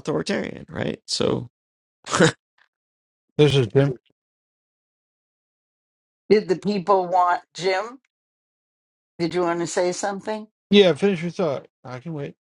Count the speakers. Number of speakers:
3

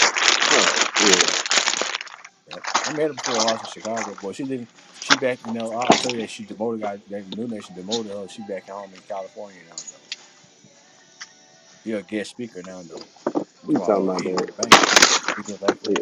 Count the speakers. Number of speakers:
2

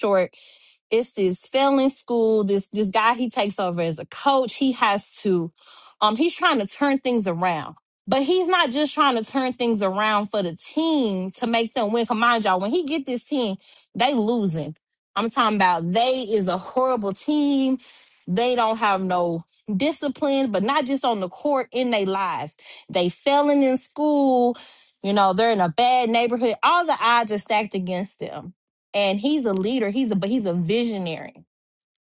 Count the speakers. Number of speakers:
1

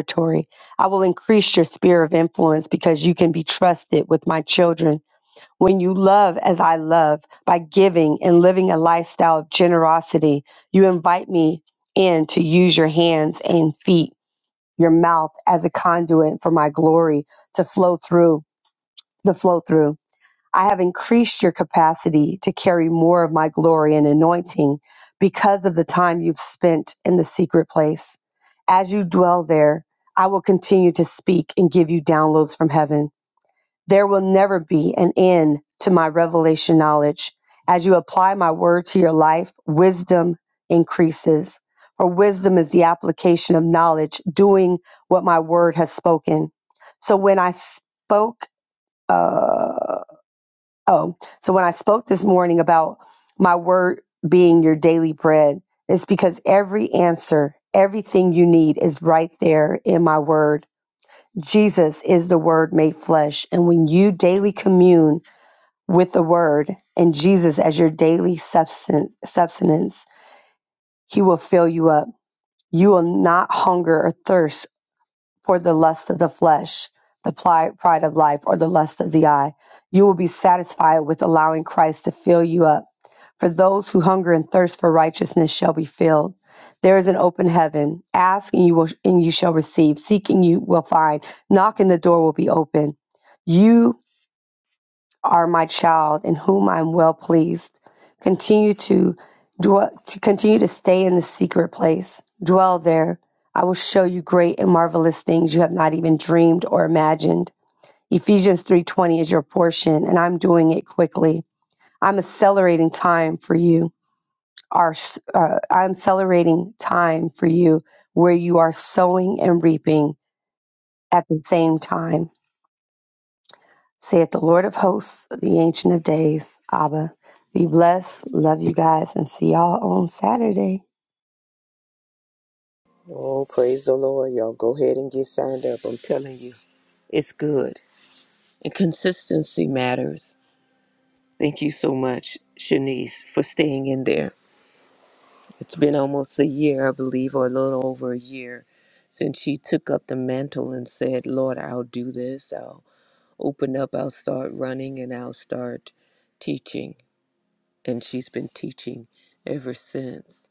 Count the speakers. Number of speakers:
2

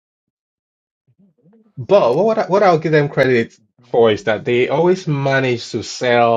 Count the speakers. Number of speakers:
1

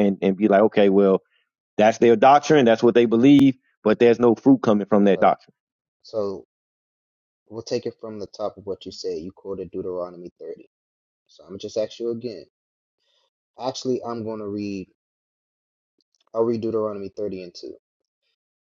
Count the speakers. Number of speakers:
2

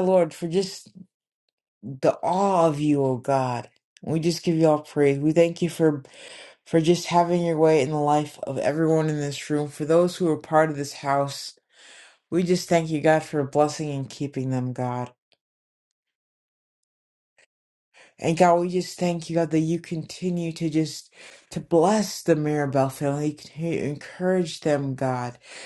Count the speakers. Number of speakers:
1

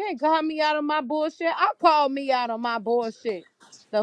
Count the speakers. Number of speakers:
1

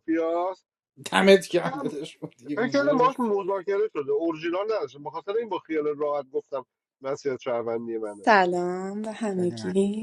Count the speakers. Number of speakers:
3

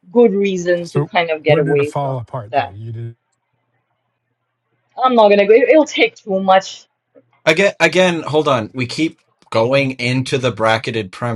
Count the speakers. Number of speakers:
3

